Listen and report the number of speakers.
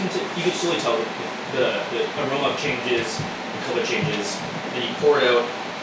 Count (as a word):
one